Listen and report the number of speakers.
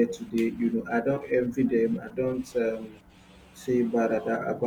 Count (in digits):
1